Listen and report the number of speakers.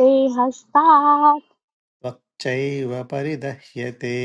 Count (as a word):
two